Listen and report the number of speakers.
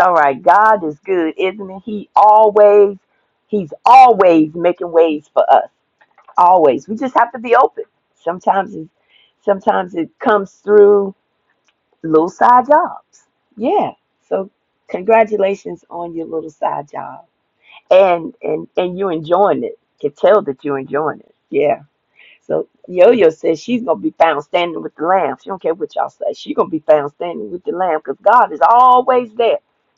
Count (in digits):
1